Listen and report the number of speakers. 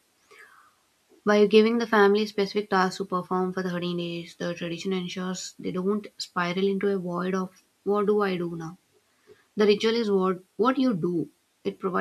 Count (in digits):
1